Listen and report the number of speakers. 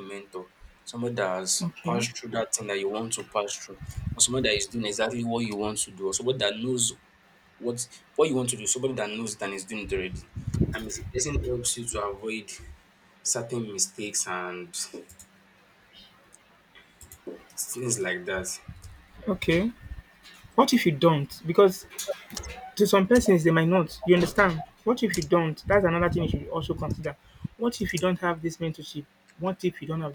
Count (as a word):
two